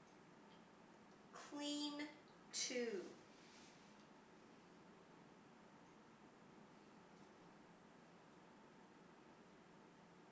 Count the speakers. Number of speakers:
one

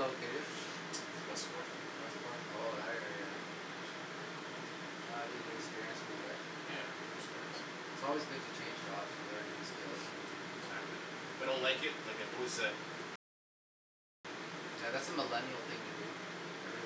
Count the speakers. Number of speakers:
two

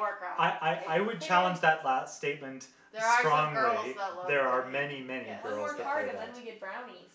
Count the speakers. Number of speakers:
three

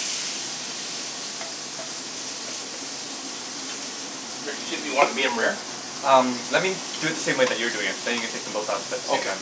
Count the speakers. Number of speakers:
two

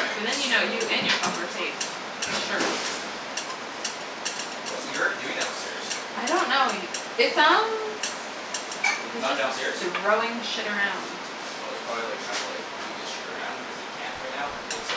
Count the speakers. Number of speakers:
two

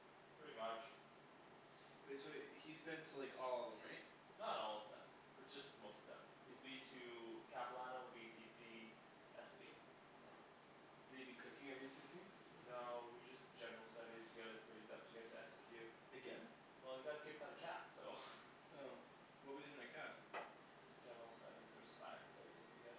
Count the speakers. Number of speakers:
two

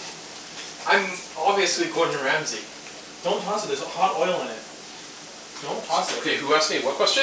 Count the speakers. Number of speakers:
three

